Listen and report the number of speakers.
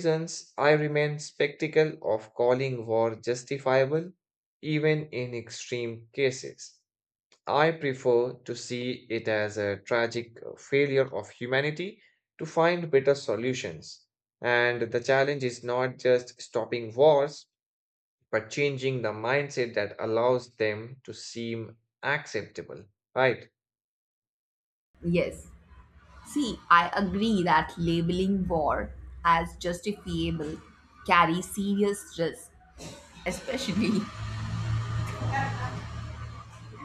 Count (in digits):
2